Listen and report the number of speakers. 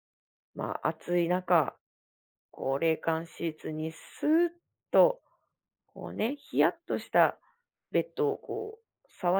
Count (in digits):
1